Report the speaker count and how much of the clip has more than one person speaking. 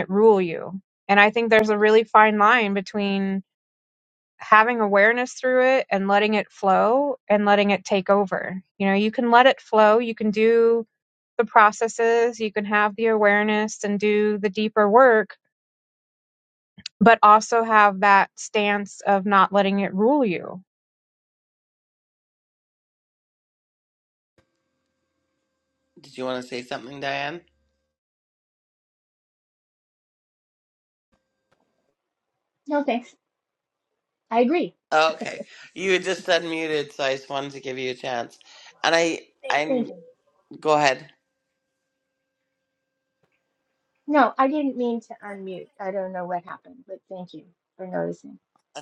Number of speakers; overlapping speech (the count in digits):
3, under 1%